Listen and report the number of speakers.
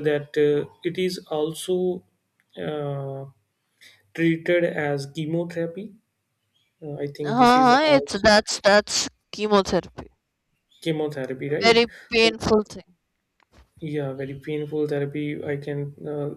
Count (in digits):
2